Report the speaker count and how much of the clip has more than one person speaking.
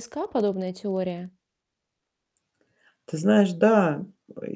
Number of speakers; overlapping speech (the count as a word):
two, no overlap